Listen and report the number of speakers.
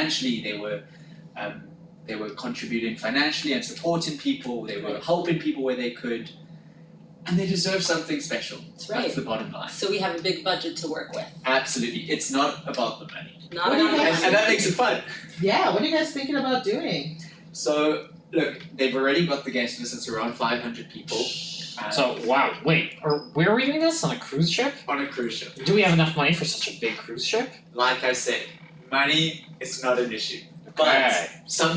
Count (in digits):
4